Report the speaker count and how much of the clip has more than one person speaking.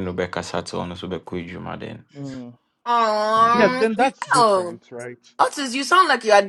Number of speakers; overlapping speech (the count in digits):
3, about 21%